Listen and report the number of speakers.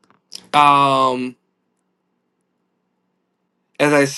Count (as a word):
one